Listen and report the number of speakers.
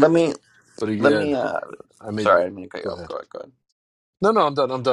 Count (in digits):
2